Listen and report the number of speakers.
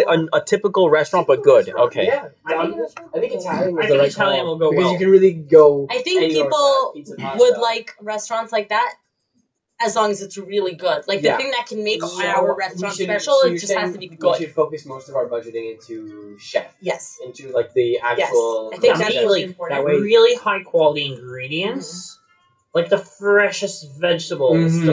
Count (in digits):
4